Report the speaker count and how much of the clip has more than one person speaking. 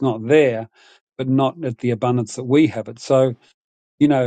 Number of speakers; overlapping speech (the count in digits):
1, no overlap